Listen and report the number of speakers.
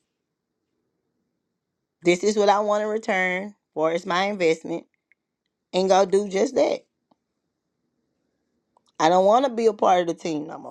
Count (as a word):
one